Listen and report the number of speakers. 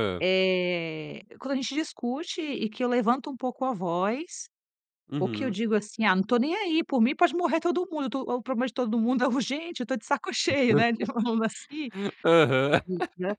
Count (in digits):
2